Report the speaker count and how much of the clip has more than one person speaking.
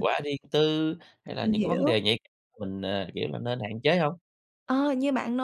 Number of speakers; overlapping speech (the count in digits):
2, about 10%